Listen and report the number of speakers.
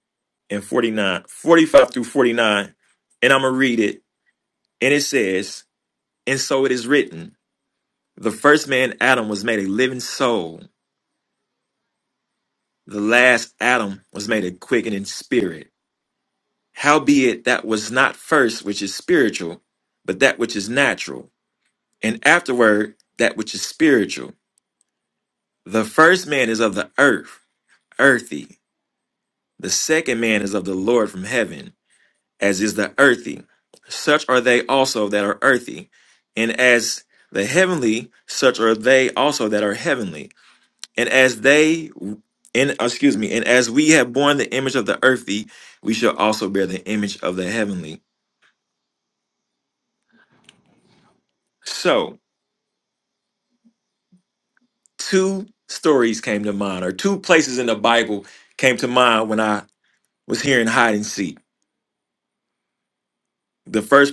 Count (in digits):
1